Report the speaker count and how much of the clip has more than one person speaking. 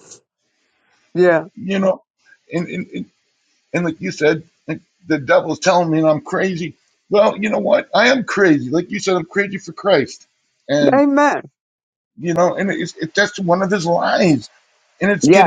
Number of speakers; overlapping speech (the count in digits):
2, about 3%